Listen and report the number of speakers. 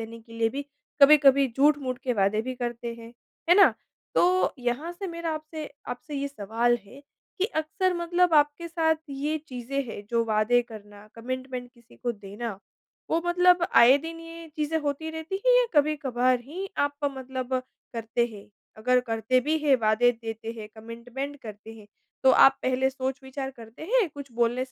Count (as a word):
one